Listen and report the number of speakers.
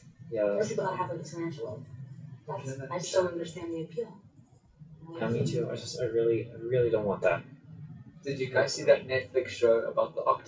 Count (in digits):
3